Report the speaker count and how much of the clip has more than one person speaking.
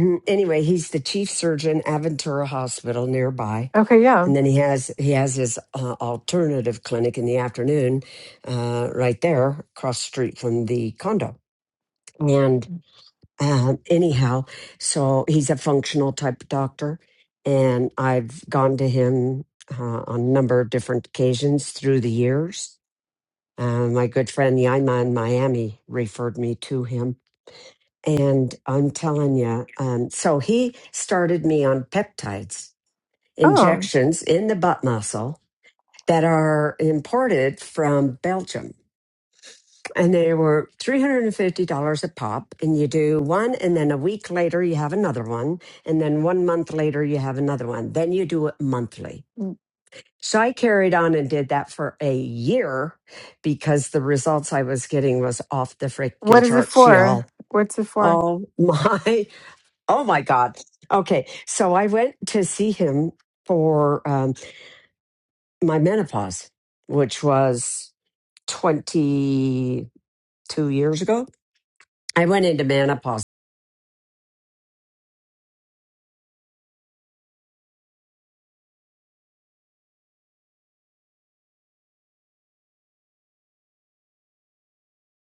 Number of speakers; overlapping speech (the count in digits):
2, about 2%